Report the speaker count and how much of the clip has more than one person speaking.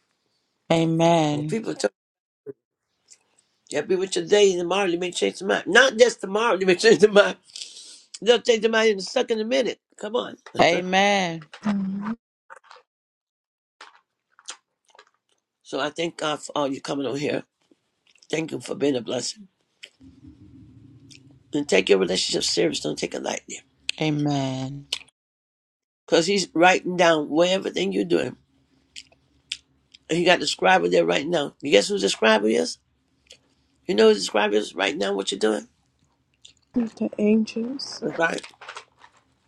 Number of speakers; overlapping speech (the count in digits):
3, about 1%